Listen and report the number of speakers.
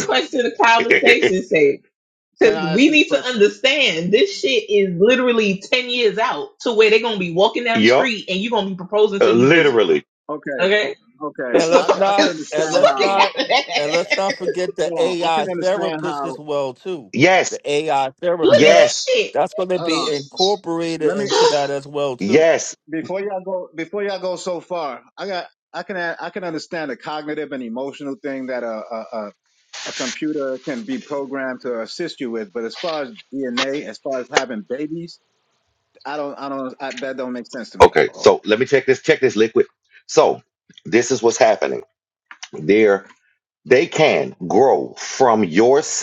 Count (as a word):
four